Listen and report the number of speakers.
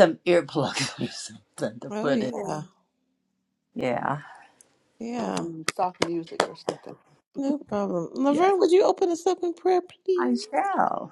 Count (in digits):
3